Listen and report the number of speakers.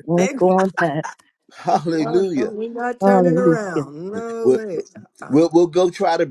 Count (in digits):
3